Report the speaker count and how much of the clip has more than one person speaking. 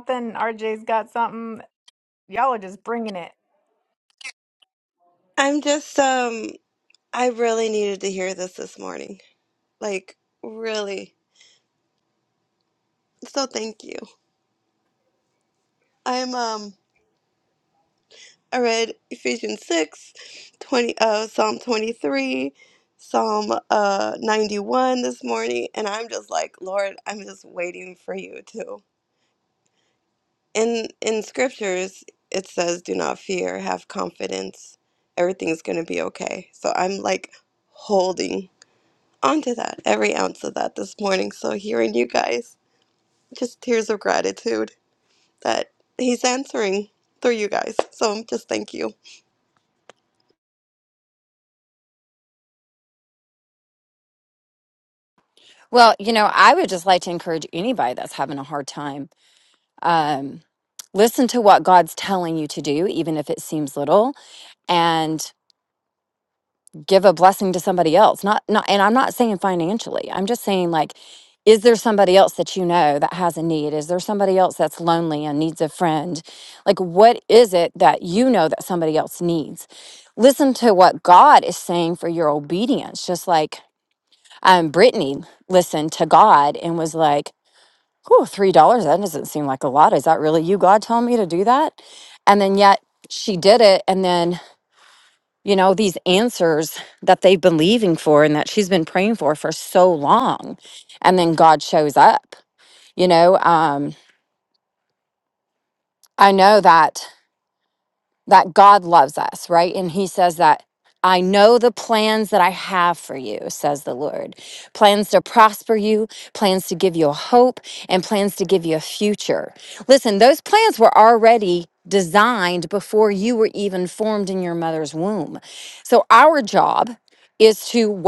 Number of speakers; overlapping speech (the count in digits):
3, no overlap